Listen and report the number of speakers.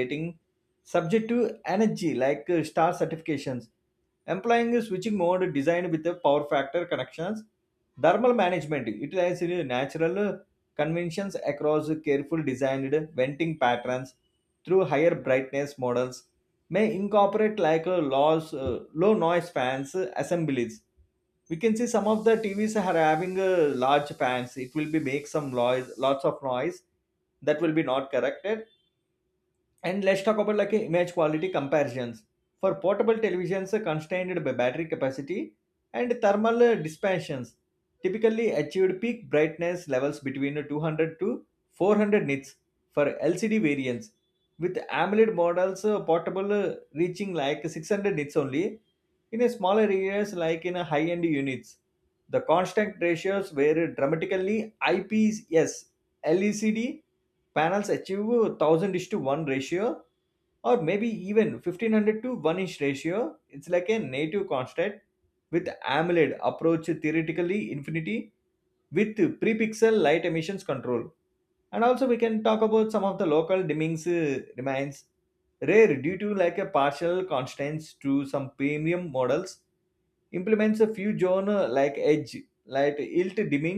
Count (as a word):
one